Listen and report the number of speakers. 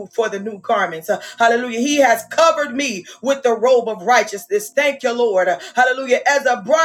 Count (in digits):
1